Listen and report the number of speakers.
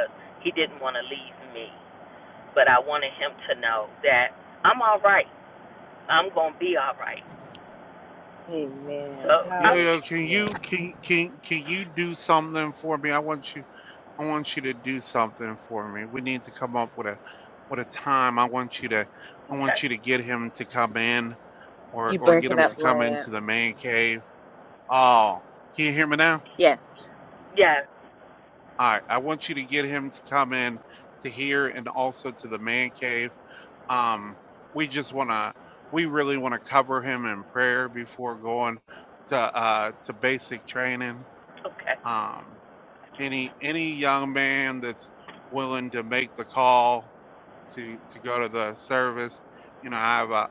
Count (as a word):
three